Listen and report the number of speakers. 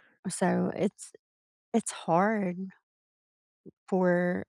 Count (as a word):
one